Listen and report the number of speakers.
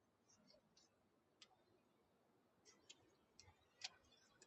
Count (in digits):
0